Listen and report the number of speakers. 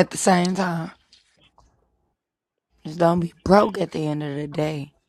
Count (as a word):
one